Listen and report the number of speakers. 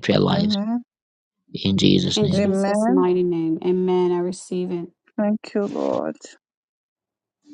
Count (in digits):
3